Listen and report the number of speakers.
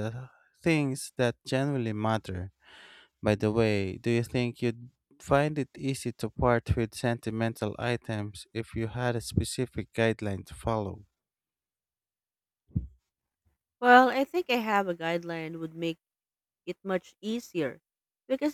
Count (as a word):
two